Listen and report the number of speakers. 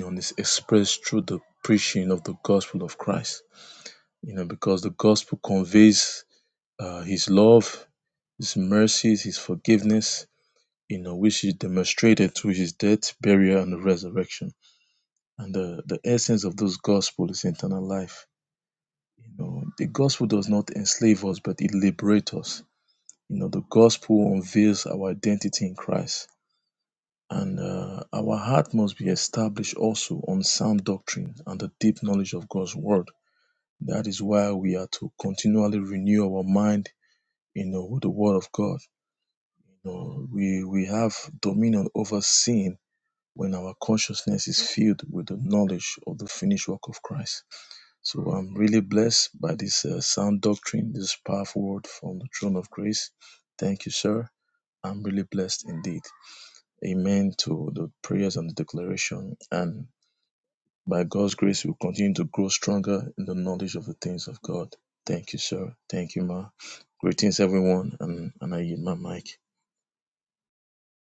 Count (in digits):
1